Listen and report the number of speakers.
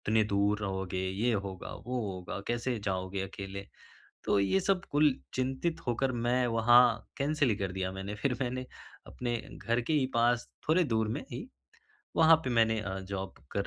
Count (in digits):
1